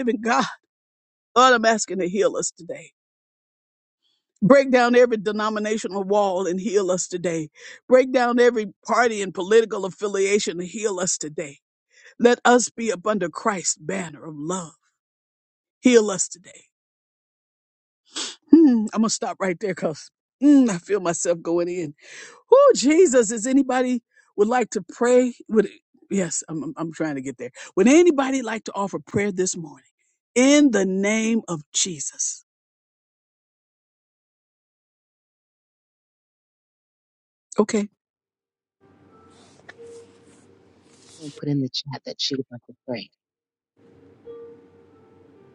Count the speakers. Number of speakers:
2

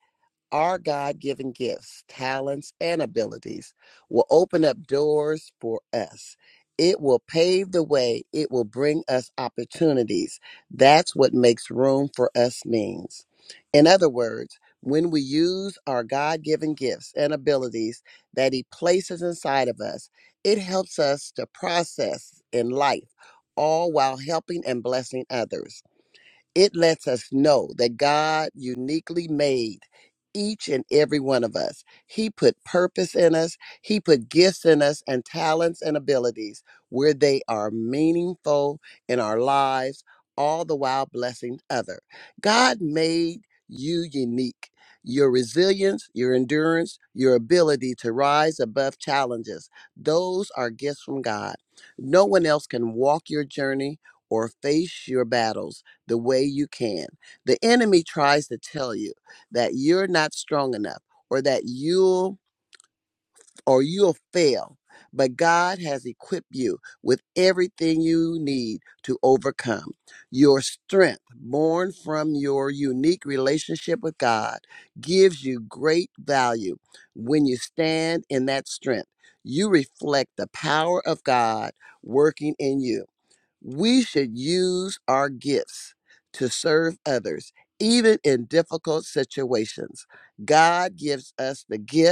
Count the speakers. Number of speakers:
1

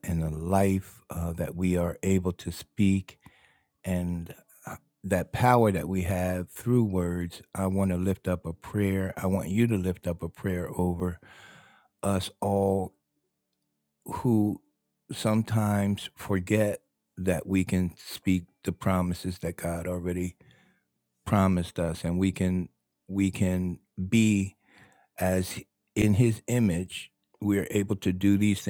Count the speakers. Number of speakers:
1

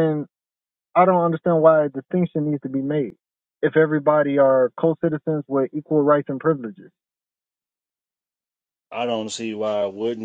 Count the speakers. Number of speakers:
2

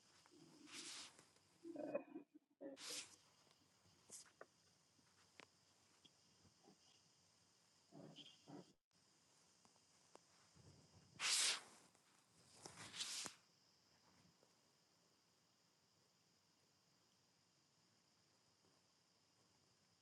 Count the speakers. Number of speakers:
0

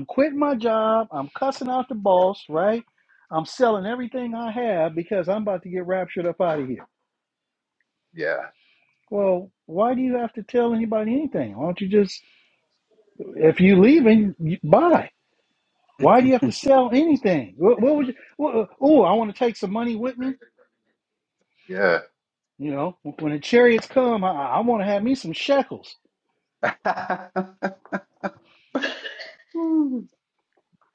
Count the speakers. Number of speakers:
2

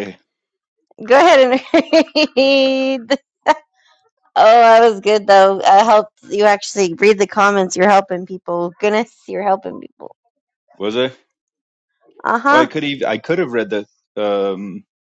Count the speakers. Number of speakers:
2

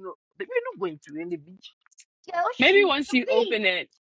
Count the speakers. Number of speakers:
2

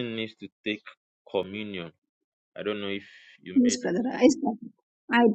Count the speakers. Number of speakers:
2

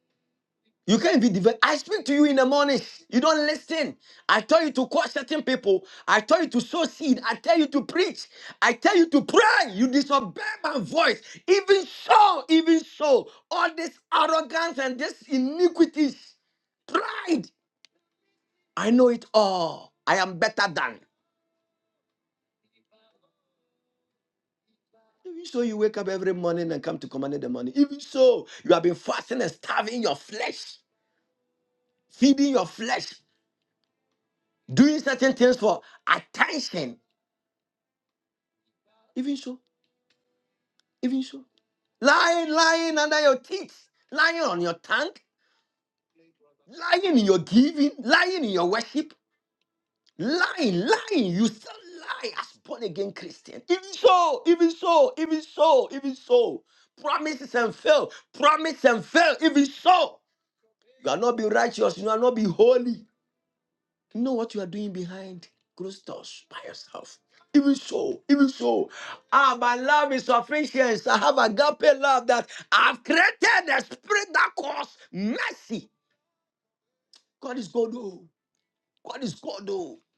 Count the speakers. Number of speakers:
1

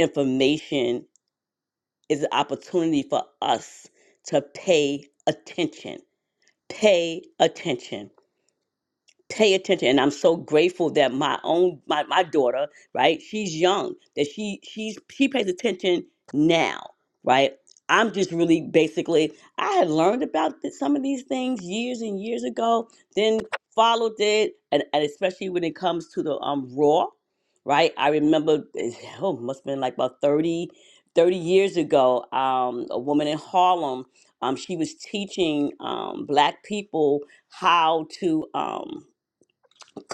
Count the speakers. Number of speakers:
1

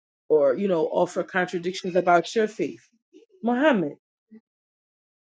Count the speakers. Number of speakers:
1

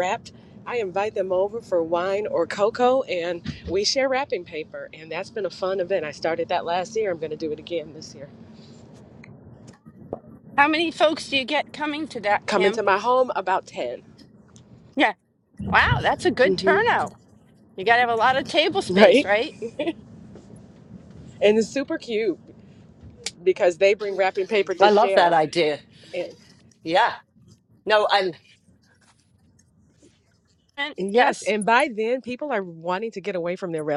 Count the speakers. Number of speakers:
3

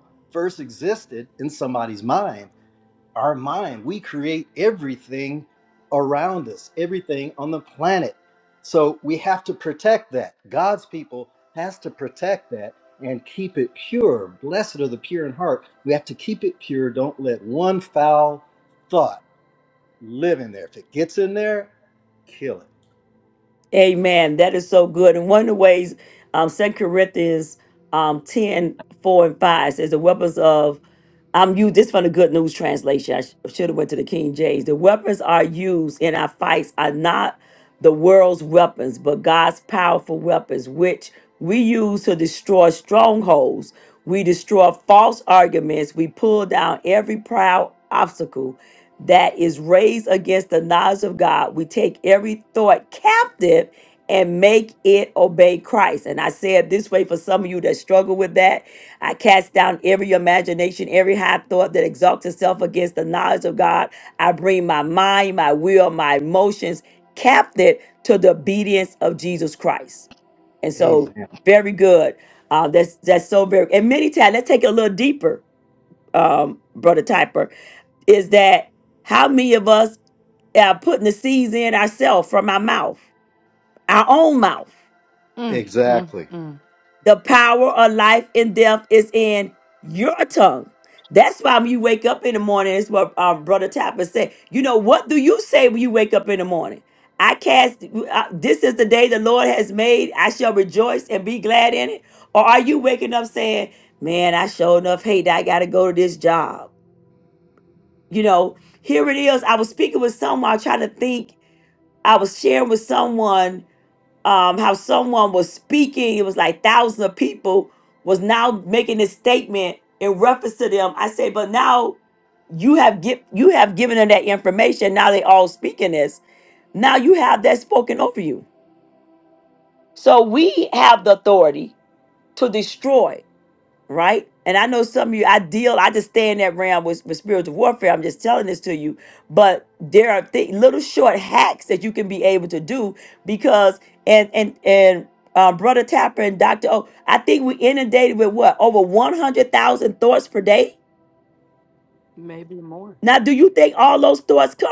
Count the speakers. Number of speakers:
3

